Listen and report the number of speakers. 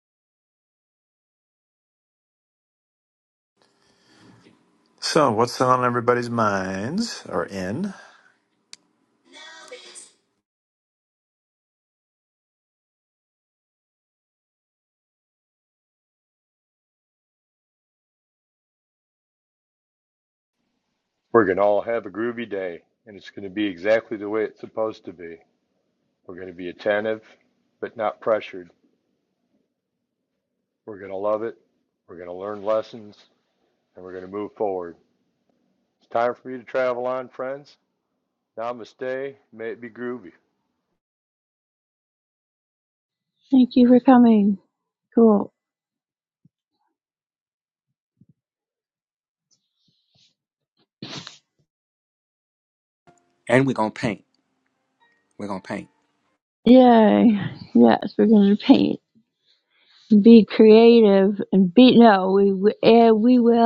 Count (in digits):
4